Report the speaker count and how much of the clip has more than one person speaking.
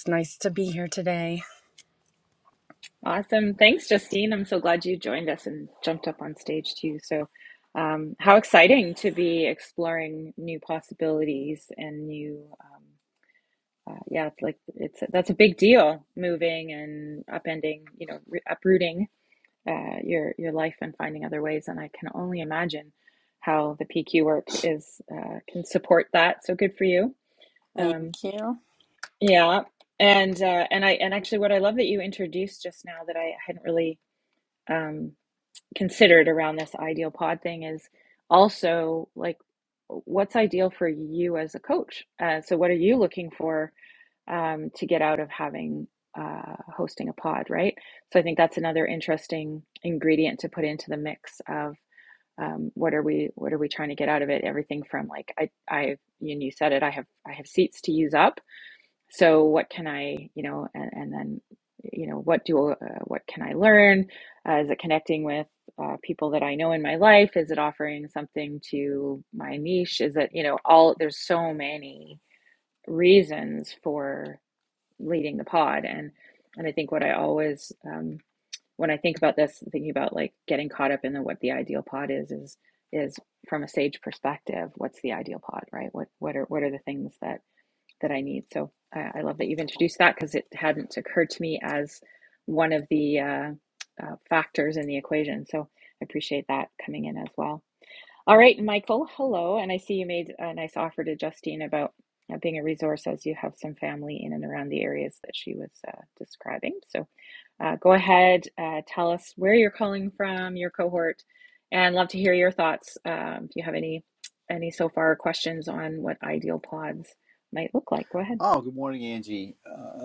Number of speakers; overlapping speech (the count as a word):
three, under 1%